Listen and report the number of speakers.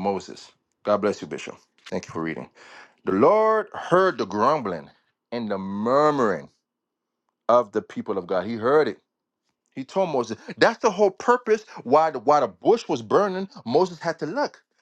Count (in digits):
1